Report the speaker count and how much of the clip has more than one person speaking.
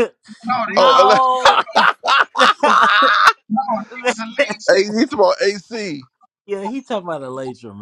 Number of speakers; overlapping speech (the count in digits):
3, about 10%